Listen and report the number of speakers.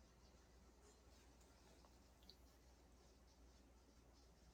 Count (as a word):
zero